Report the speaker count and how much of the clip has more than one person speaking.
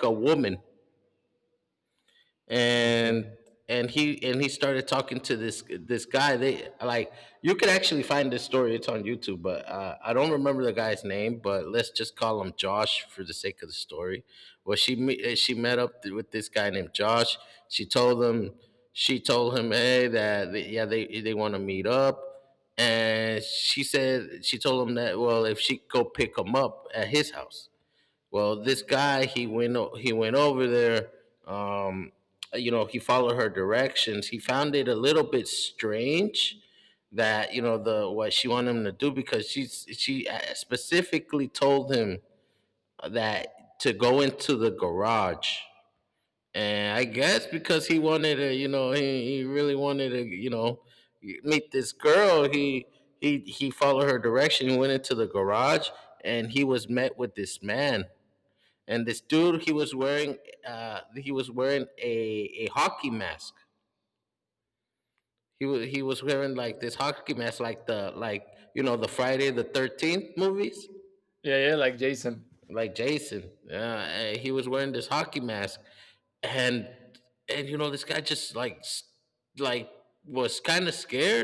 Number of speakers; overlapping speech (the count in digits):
2, about 1%